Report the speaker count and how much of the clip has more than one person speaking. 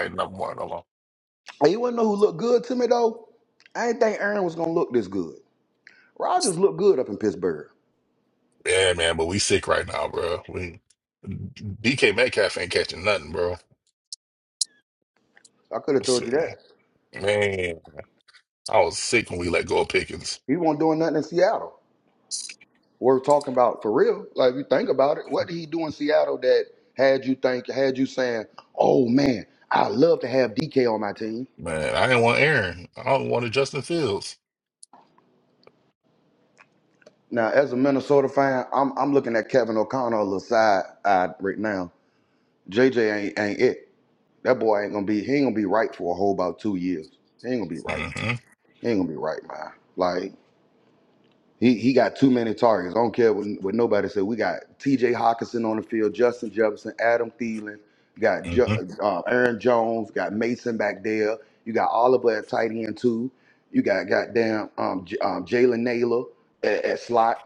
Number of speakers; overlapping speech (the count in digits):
2, about 1%